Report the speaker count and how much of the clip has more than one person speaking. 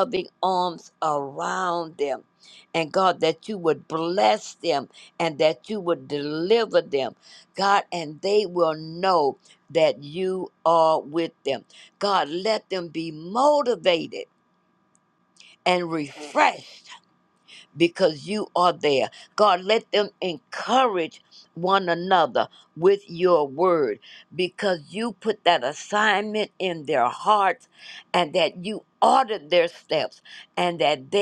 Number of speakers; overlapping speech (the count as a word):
one, no overlap